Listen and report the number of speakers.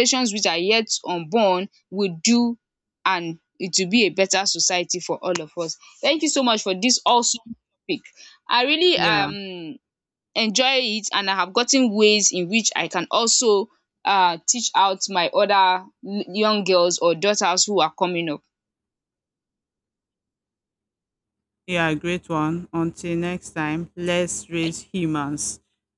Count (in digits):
2